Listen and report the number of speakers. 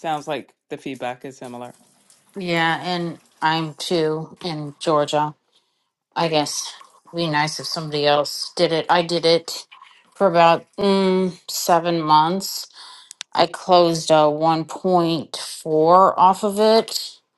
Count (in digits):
2